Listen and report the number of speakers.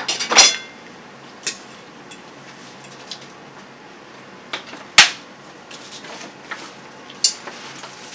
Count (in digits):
0